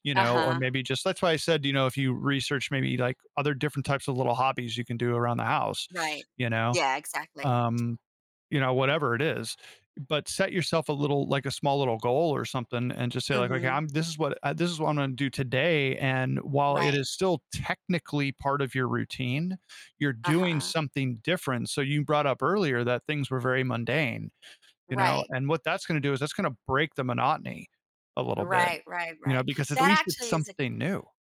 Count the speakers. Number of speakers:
2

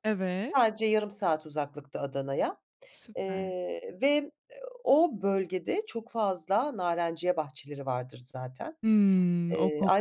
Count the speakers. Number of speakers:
2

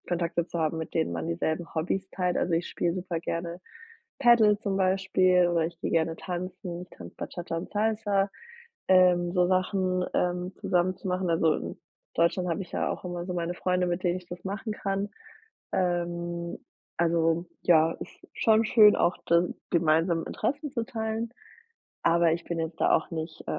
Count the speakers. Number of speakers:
1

